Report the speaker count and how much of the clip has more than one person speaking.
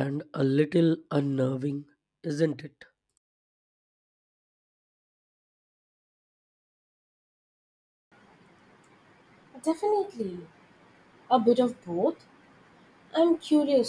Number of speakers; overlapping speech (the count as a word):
two, no overlap